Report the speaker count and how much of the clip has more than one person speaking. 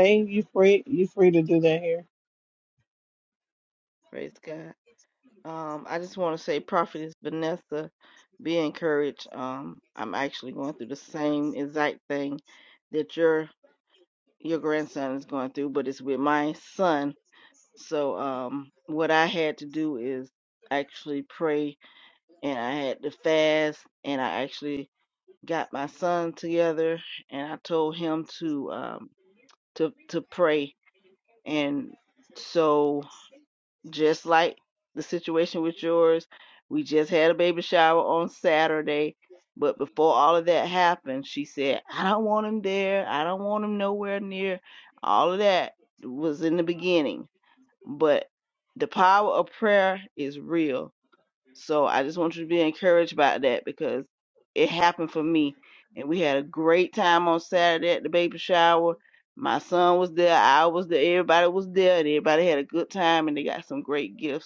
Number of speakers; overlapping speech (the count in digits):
2, no overlap